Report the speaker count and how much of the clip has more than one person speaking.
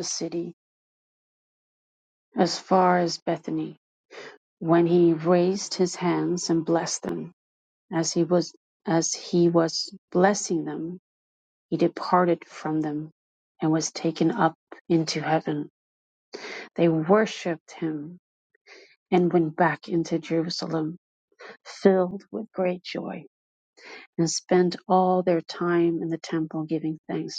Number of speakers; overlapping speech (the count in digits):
1, no overlap